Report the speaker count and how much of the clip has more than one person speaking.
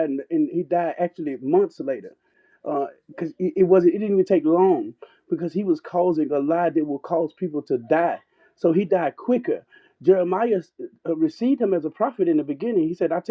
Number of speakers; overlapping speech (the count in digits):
1, no overlap